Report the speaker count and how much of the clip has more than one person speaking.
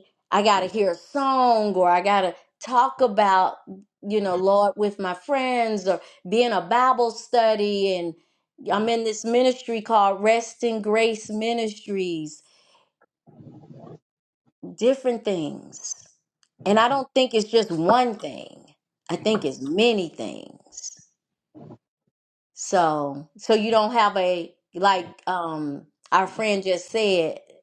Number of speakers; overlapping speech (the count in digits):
1, no overlap